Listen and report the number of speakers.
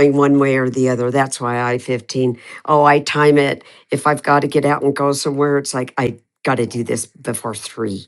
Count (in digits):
1